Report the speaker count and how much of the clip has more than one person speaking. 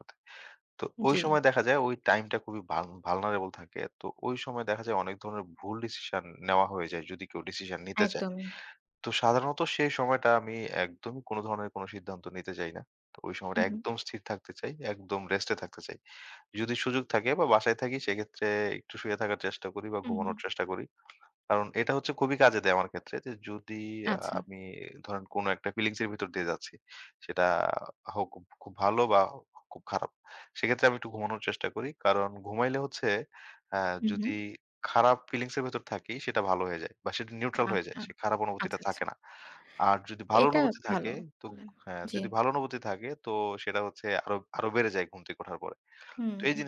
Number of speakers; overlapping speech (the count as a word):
two, about 8%